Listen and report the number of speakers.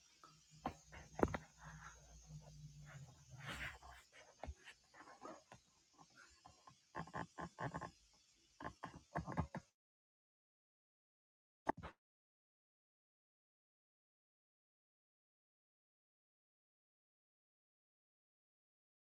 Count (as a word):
zero